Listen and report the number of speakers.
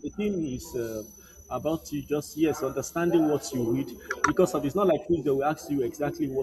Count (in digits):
1